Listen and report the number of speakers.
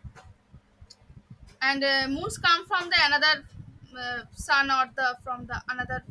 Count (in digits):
1